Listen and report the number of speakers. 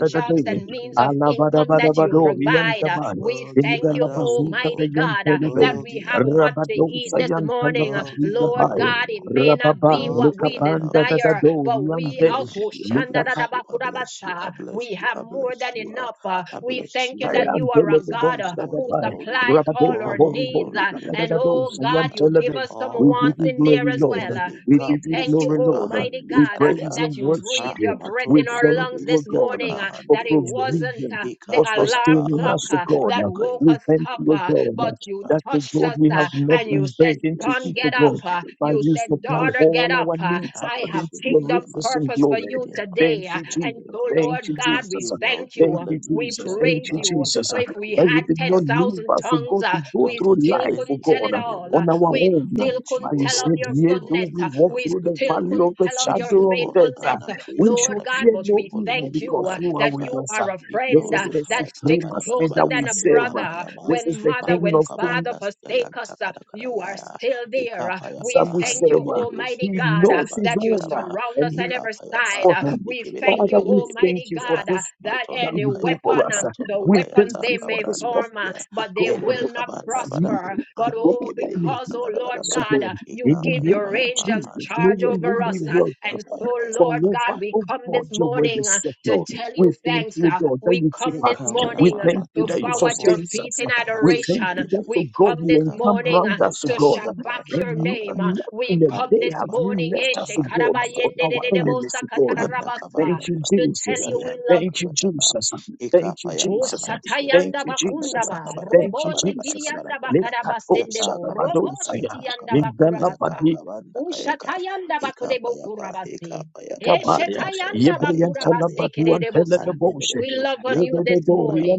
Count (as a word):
three